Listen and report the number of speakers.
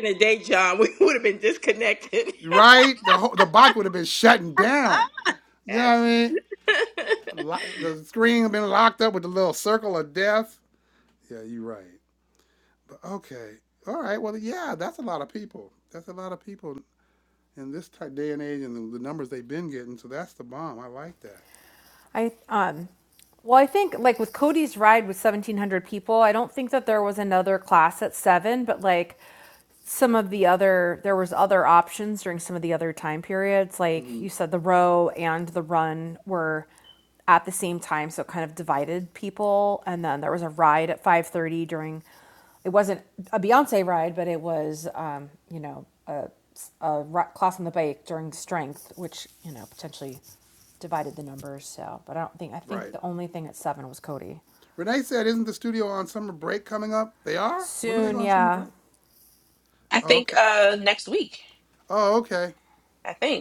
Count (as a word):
four